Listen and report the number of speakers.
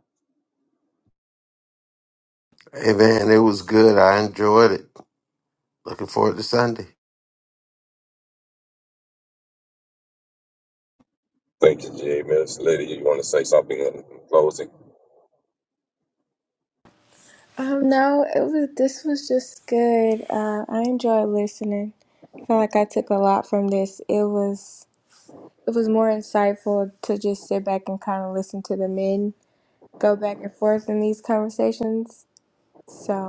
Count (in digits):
3